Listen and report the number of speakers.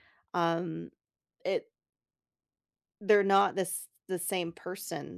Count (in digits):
1